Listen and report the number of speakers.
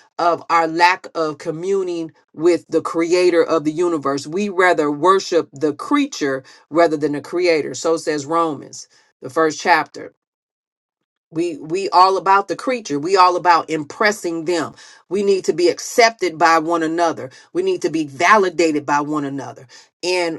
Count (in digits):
1